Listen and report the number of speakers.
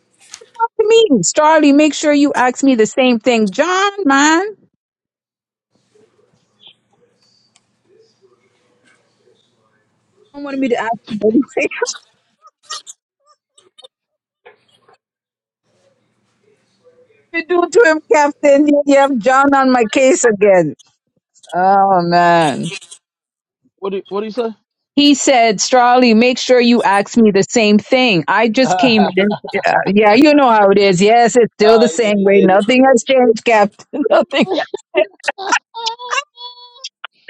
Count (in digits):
2